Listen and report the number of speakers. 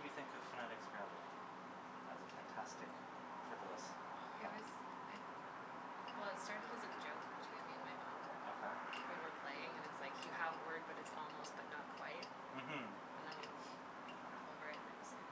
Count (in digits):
2